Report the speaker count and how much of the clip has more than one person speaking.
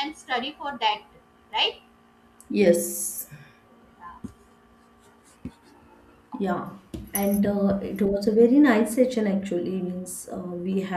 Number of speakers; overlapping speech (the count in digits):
2, no overlap